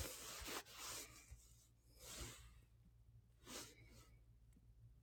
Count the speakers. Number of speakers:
0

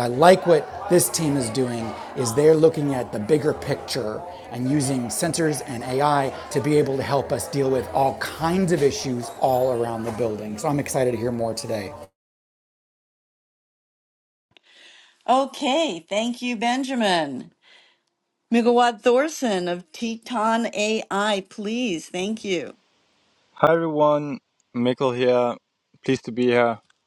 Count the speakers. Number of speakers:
3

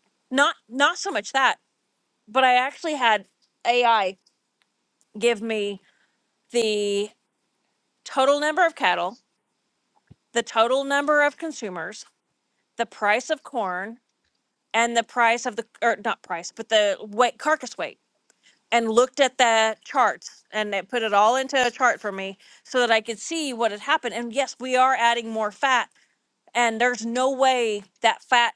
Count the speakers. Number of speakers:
1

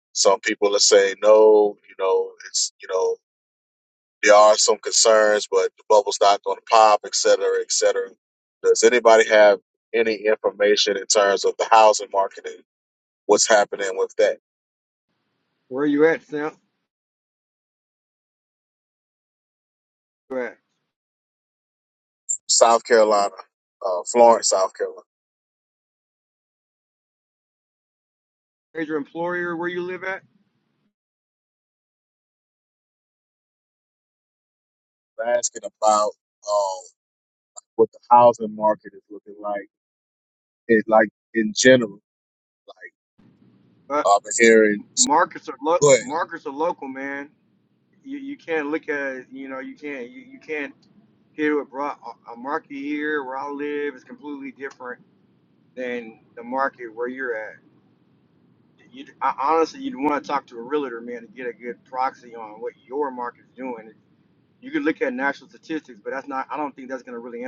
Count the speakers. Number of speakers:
2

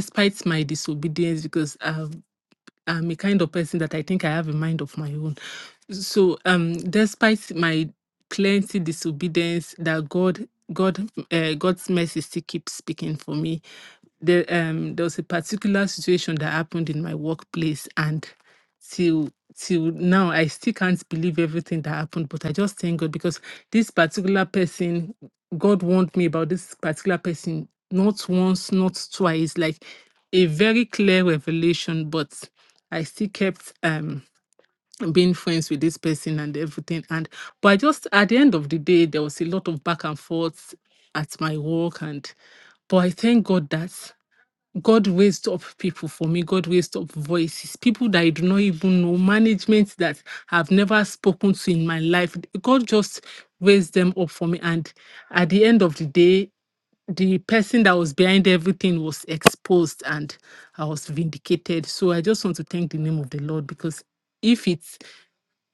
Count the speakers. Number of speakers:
1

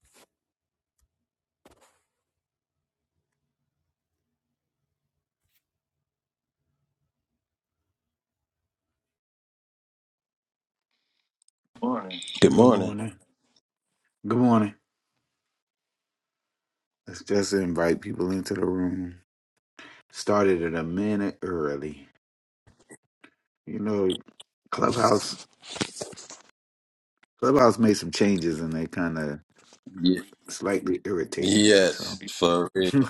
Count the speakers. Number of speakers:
2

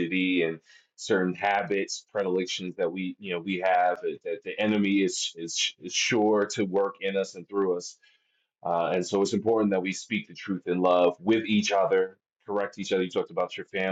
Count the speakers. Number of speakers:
1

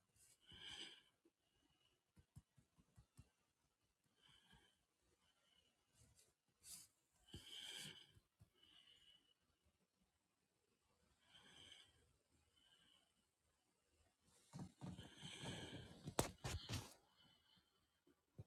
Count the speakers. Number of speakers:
0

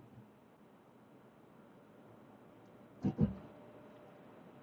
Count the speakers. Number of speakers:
0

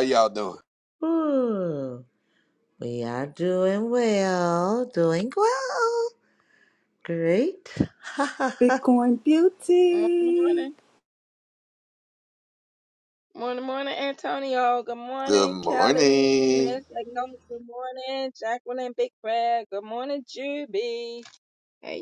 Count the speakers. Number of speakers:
4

